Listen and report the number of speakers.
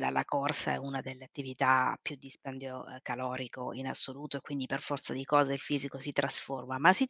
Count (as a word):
one